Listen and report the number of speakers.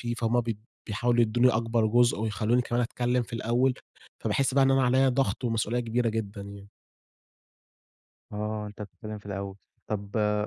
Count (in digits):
2